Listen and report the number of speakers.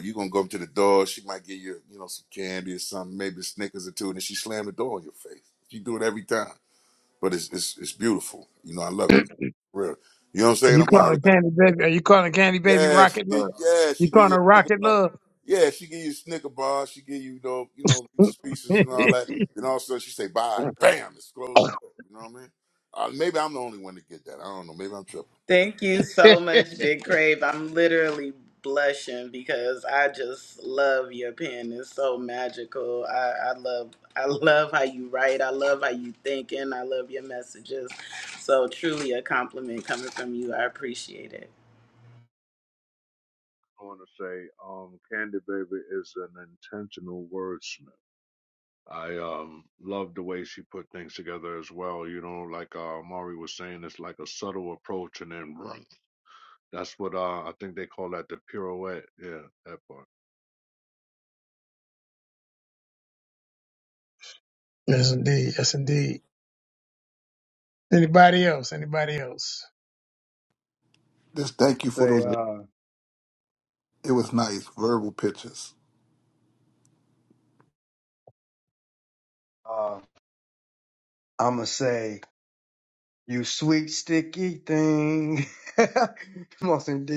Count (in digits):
6